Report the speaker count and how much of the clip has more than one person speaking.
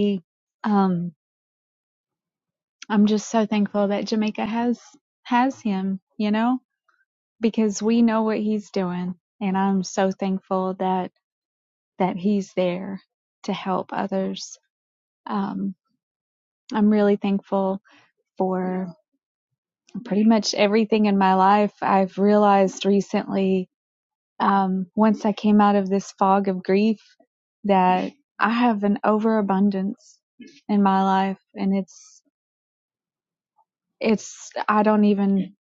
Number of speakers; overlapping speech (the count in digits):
1, no overlap